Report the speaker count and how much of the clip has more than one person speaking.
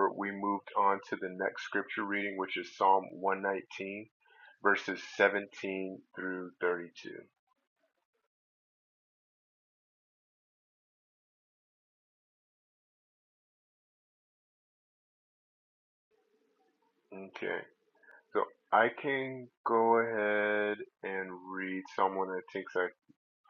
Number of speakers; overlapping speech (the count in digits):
1, no overlap